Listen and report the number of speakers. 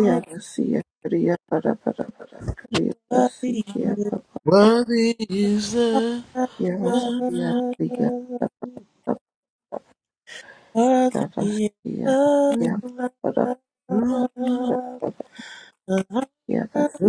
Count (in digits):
3